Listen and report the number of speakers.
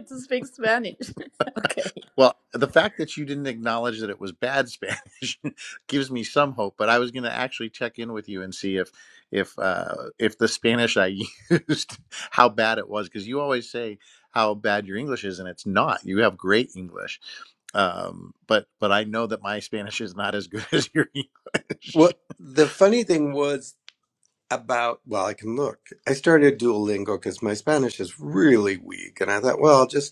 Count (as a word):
three